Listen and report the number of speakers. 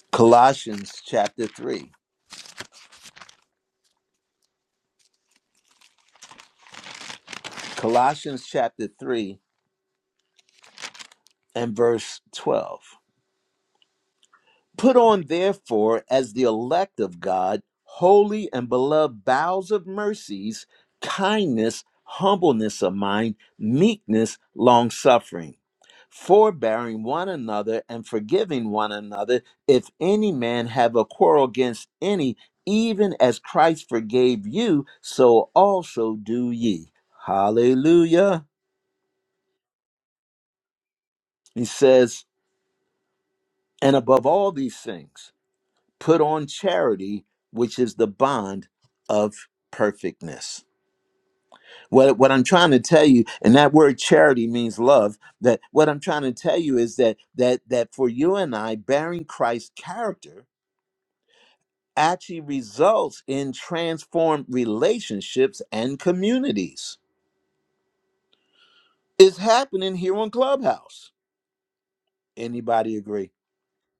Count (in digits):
1